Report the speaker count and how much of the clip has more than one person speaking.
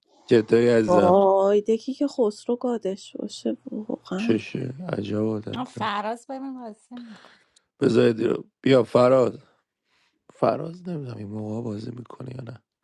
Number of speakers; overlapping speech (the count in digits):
3, about 4%